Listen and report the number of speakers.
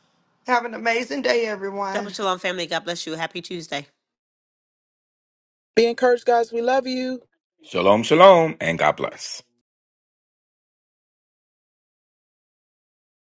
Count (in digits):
4